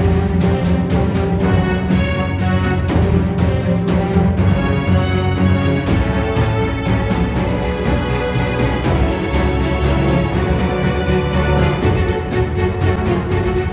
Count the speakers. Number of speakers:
0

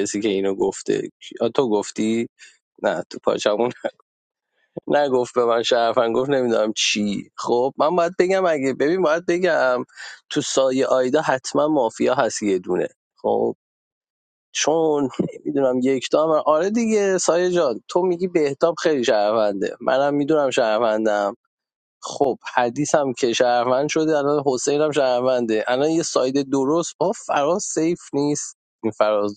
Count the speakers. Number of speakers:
1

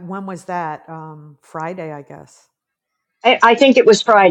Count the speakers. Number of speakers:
2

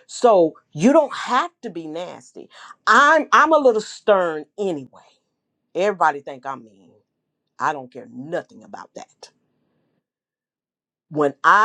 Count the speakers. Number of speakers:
1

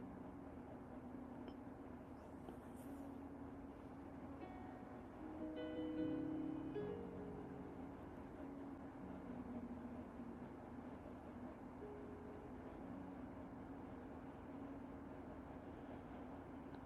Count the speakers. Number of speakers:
0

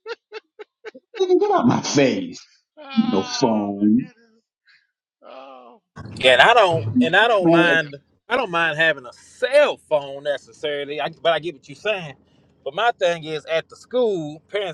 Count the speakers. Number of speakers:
3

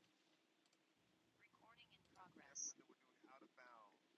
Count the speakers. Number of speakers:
0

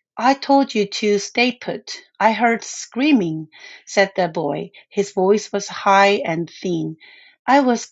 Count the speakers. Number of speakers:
1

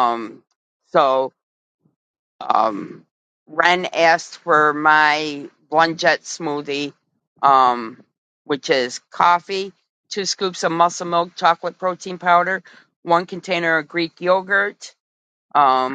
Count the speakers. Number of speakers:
1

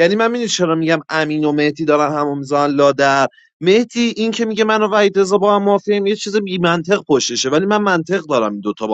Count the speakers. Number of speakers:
1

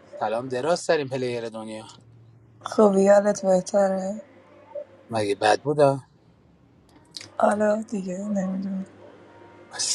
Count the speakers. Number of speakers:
2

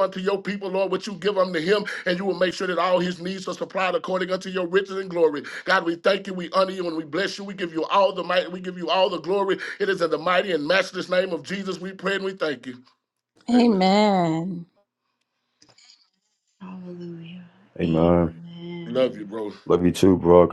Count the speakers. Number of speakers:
4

